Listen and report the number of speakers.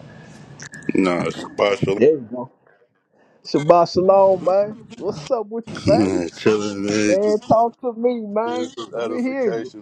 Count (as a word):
two